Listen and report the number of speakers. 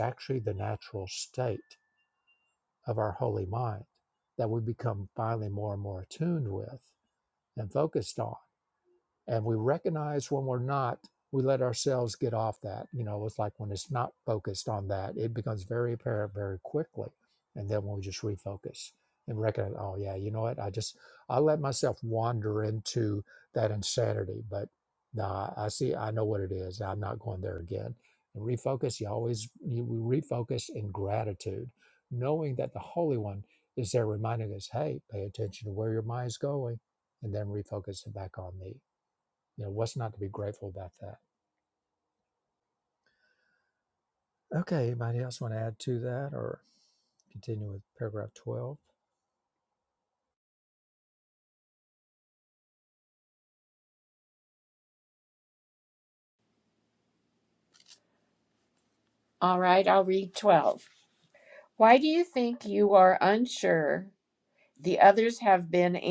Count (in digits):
2